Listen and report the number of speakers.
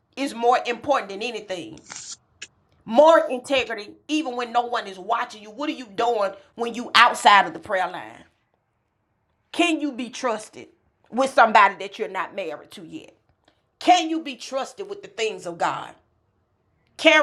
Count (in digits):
1